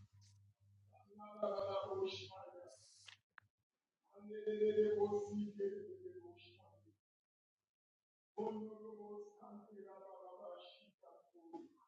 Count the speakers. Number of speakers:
0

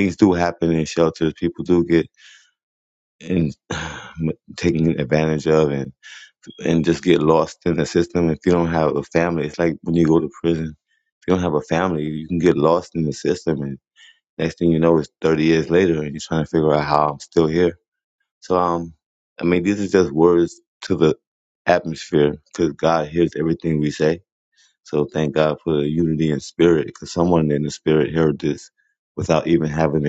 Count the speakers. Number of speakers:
1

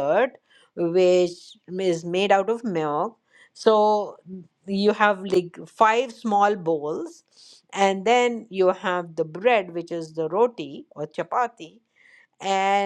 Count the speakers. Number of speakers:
1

